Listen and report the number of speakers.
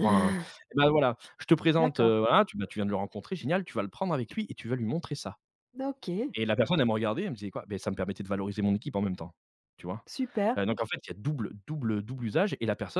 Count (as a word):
two